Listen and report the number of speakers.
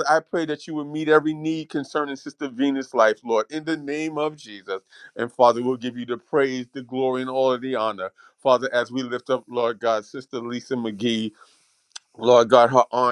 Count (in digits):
1